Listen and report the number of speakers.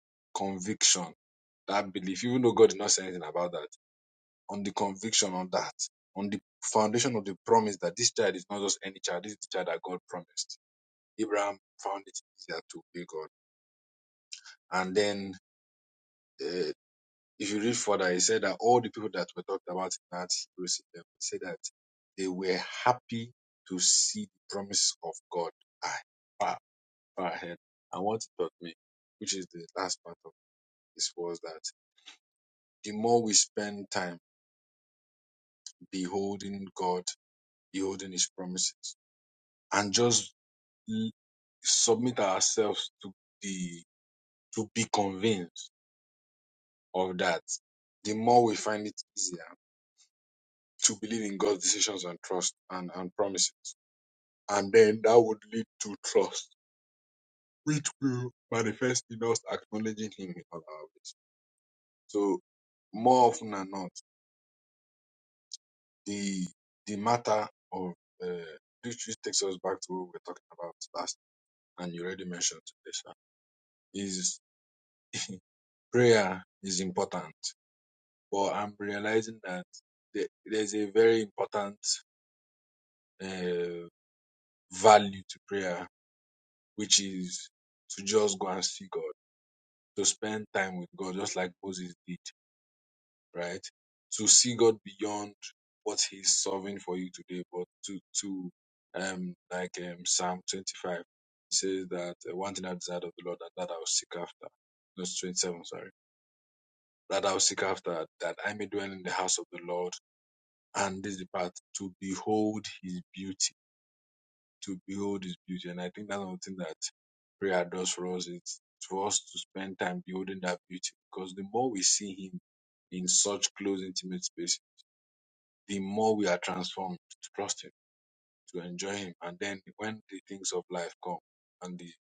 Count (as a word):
one